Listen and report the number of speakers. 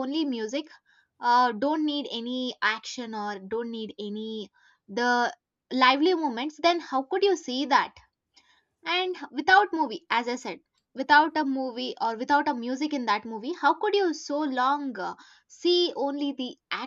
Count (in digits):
1